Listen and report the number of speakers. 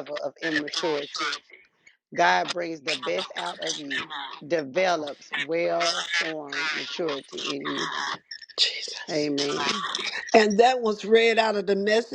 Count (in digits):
2